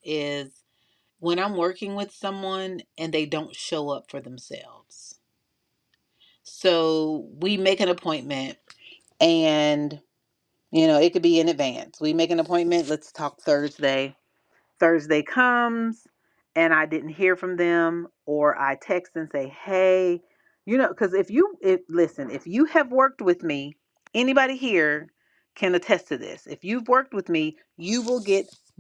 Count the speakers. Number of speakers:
1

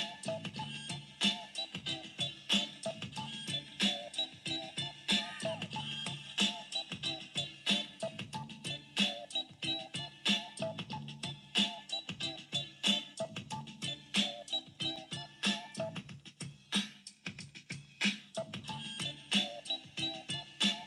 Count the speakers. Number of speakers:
0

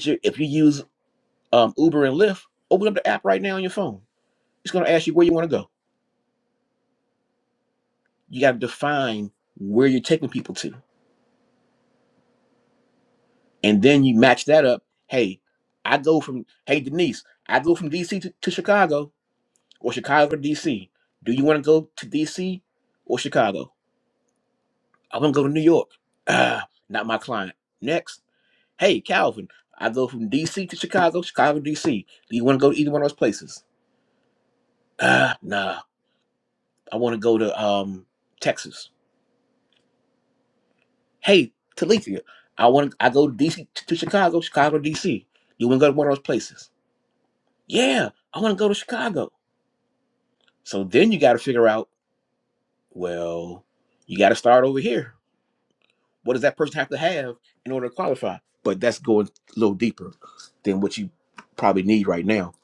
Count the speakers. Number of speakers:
1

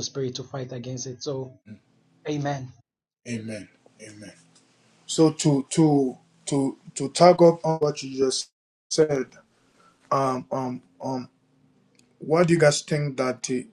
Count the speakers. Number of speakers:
2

